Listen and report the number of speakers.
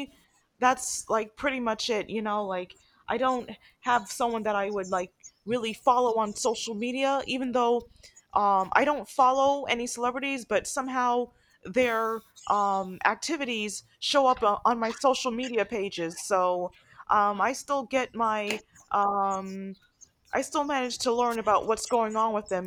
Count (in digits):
1